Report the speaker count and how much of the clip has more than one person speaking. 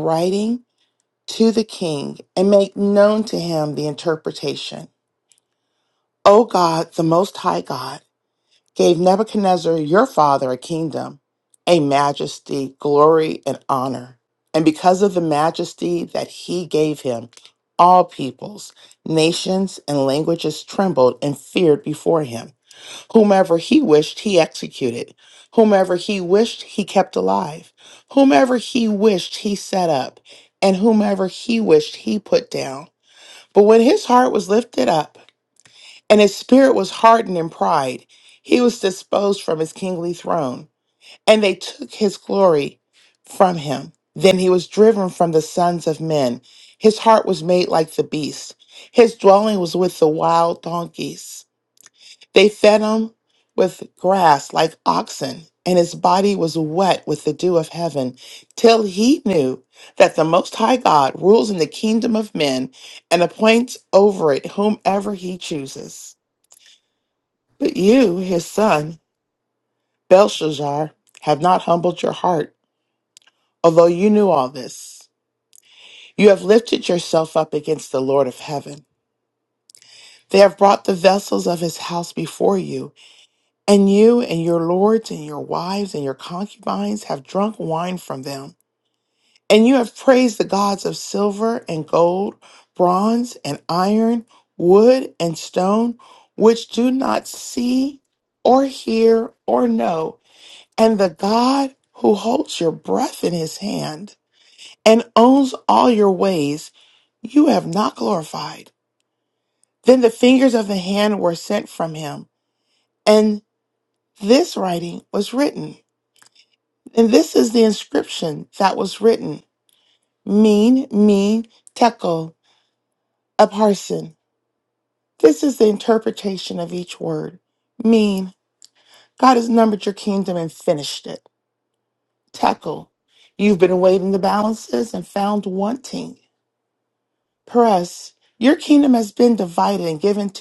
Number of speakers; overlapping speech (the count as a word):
one, no overlap